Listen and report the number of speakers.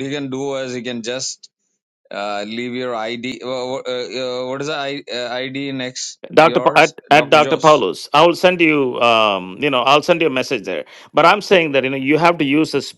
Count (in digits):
2